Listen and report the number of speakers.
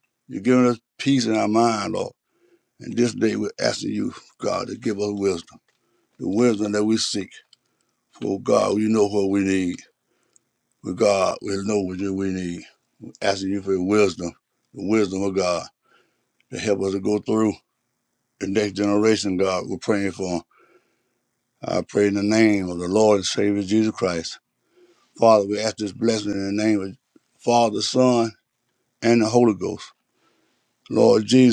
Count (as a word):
one